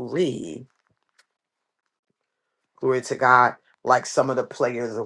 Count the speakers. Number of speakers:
1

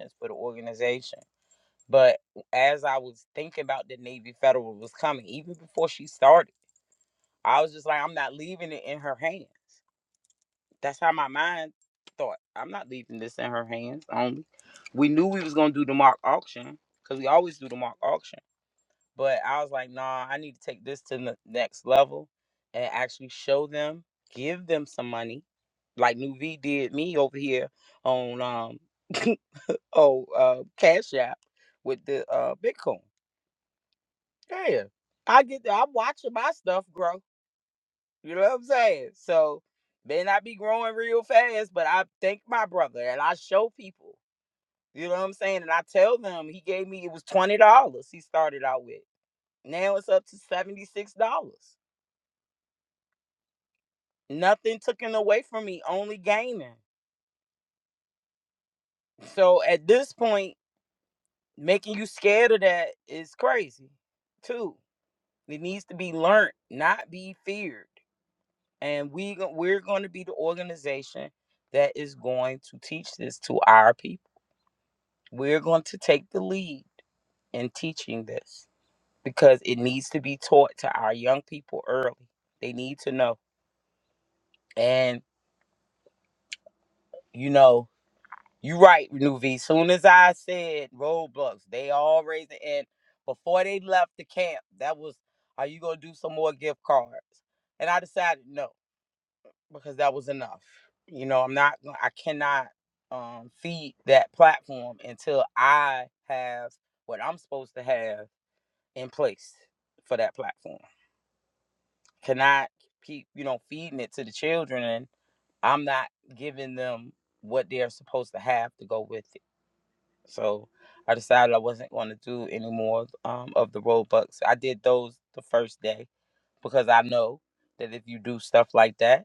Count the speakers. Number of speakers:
1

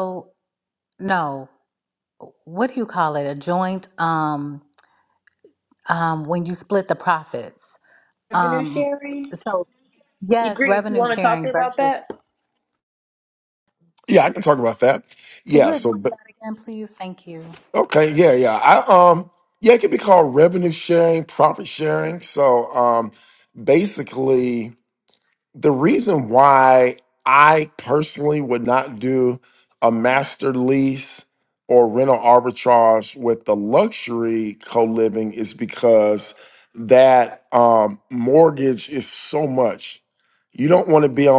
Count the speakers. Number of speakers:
3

